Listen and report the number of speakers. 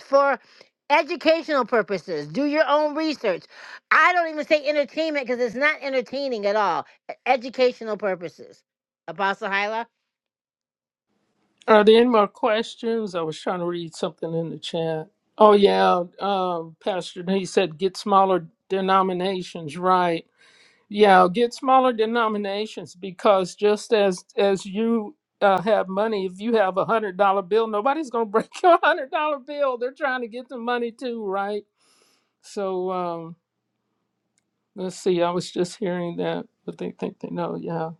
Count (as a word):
two